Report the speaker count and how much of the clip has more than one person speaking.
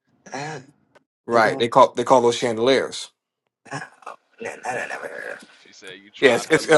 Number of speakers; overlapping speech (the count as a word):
three, about 13%